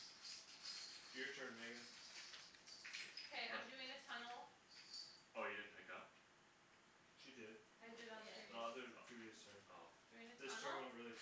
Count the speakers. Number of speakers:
3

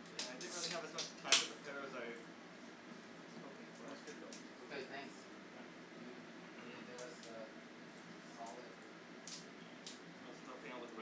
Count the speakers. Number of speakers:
2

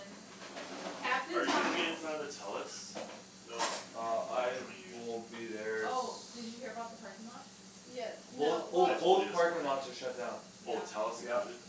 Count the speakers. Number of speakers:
4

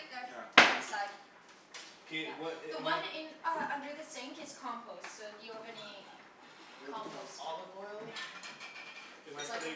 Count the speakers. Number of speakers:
3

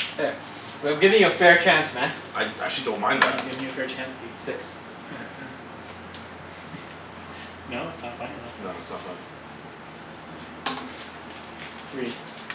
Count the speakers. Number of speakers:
3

